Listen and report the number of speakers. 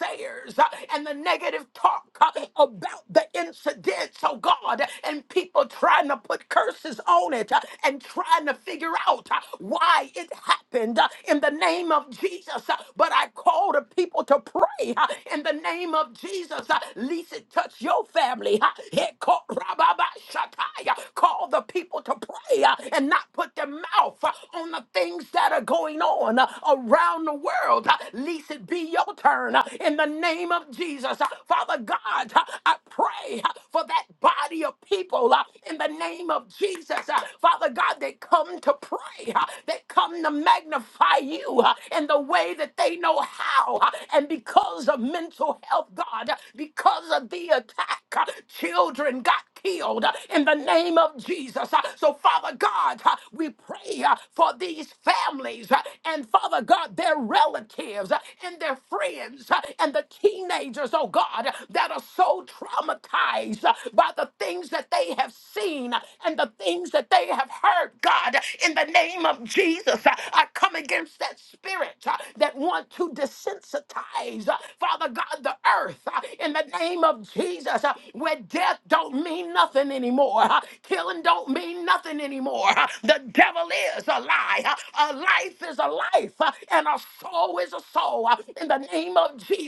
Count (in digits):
1